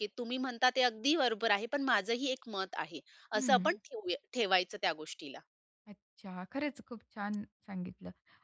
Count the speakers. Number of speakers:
two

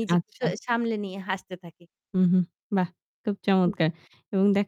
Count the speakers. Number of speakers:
two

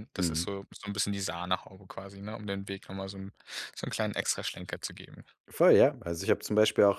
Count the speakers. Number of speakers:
two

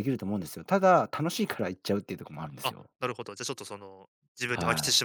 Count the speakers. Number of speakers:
two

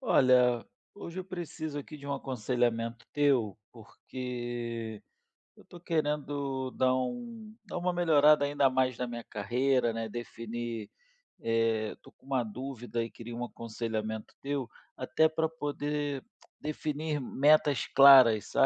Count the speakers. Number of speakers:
one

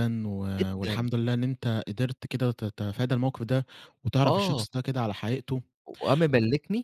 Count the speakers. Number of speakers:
two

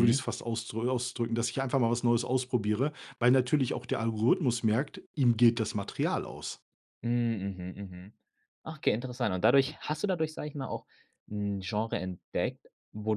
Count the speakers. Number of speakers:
two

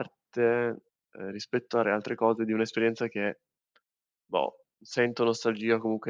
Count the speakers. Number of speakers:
one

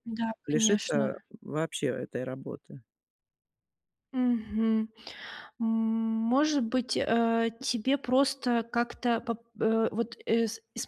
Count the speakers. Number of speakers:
two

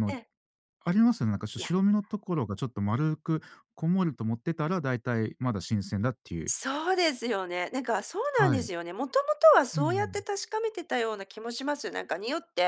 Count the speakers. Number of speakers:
two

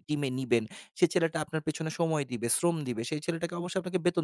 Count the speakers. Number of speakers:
one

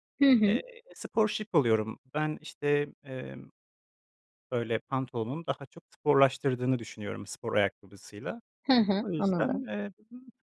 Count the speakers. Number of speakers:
two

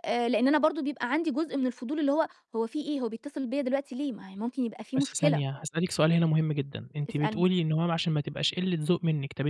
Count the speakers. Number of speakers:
two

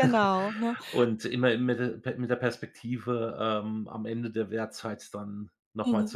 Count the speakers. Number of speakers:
two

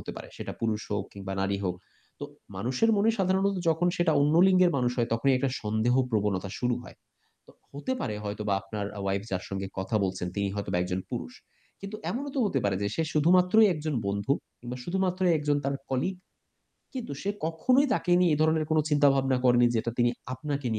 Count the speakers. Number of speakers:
one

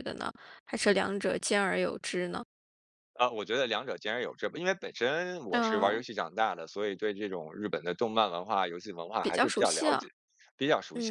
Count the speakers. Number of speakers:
two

